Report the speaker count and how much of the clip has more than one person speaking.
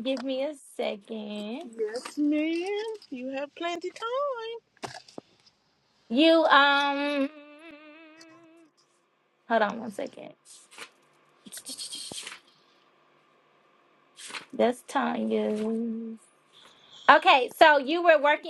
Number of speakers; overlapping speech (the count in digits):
2, no overlap